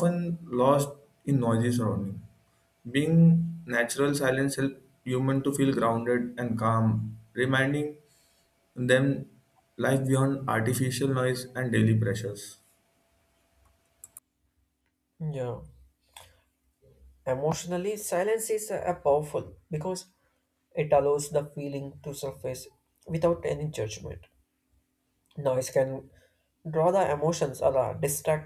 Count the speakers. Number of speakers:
2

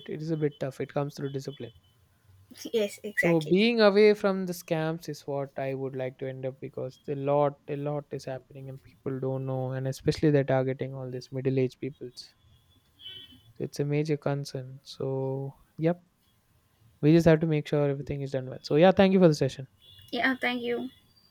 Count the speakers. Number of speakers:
2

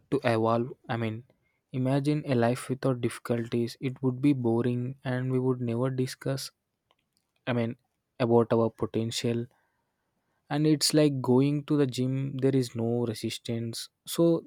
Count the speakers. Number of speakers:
1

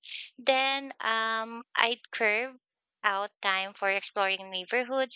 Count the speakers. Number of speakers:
1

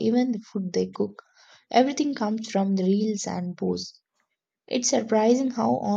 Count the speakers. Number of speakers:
1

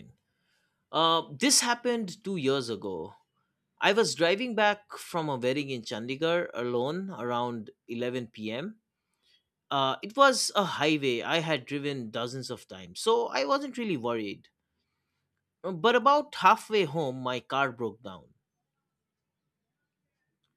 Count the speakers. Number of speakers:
1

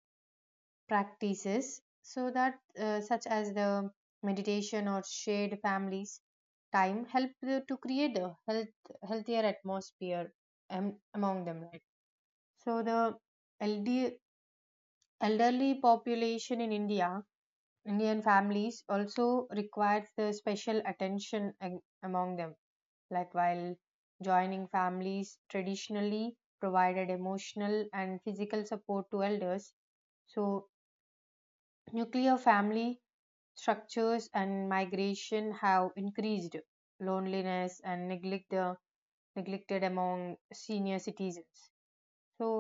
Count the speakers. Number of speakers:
1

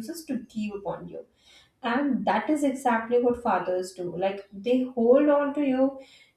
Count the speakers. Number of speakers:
1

